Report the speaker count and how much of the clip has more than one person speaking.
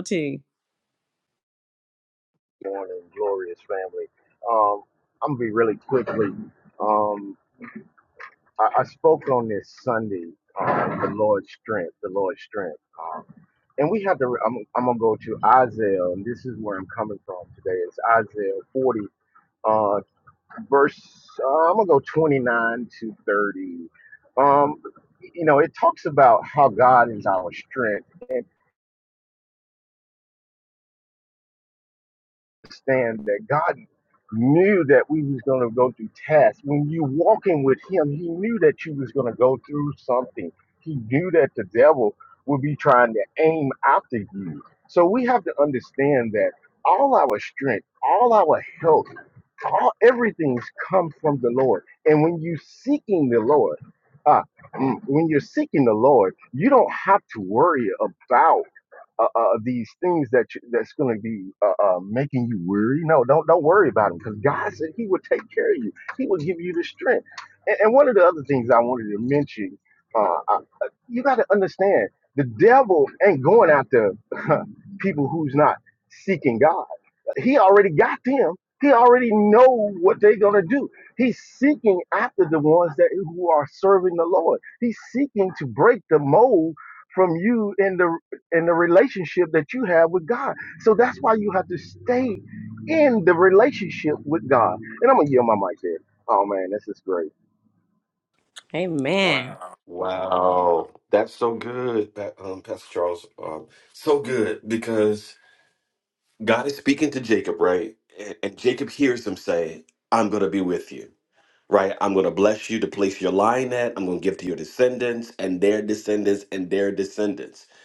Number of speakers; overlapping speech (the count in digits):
3, no overlap